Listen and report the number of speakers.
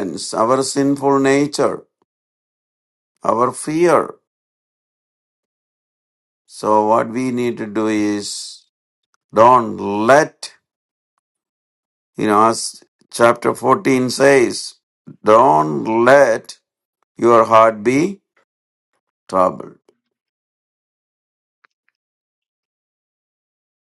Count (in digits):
1